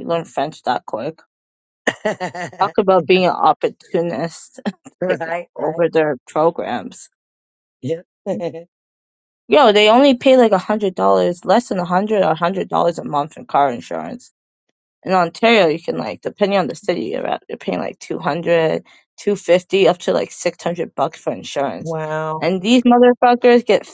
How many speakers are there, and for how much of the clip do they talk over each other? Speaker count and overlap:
2, about 2%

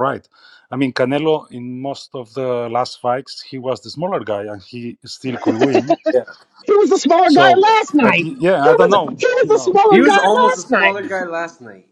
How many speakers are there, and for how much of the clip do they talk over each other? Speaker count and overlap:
3, about 20%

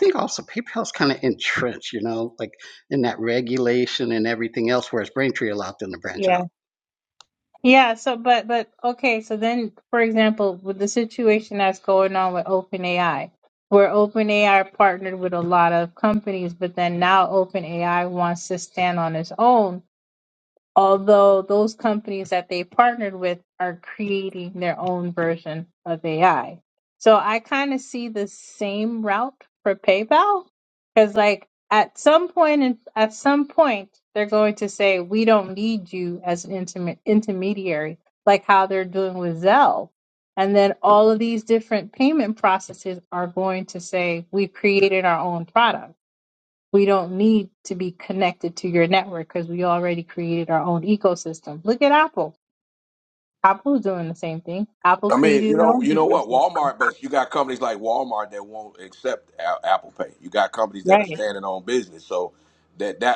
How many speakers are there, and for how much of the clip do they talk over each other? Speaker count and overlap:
3, about 3%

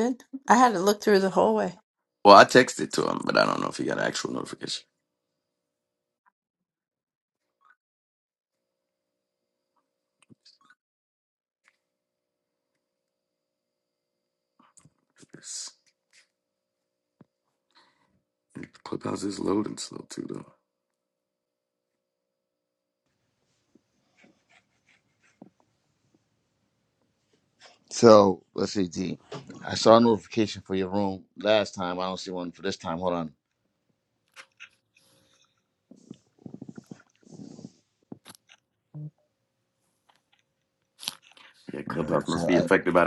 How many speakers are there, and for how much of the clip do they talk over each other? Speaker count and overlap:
3, about 2%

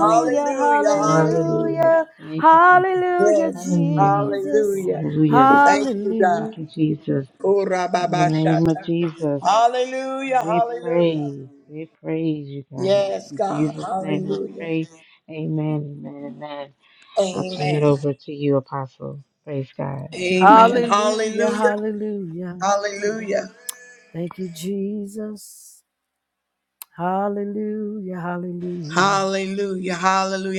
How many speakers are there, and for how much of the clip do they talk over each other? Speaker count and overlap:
3, about 36%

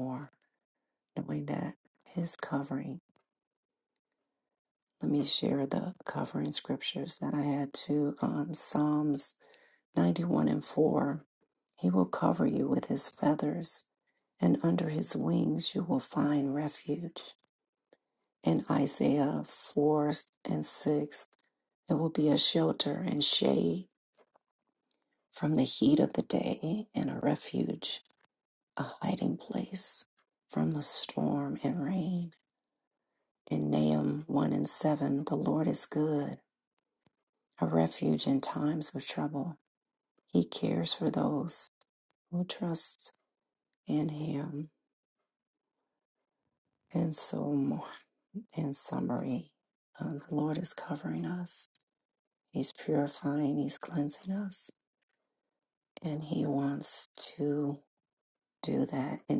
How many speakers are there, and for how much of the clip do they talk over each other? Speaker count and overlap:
1, no overlap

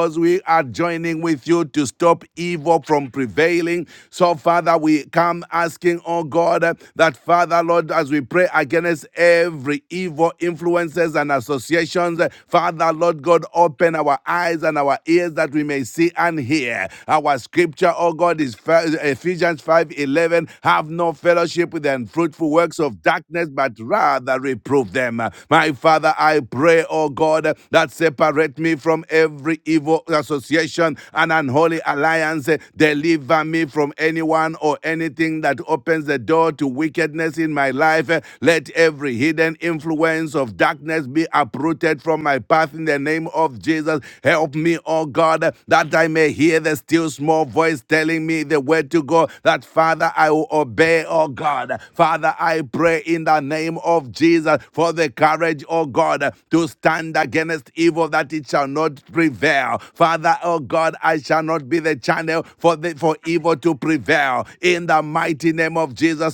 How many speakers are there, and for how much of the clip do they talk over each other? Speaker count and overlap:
1, no overlap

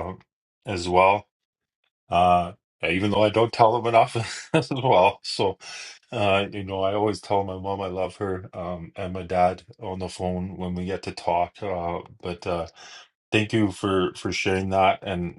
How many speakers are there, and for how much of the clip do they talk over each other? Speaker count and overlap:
1, no overlap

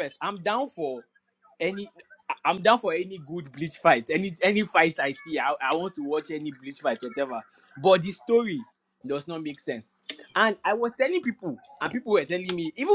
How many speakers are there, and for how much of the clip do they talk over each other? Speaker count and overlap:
1, no overlap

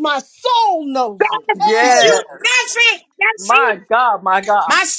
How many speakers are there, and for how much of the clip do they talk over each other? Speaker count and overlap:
3, about 31%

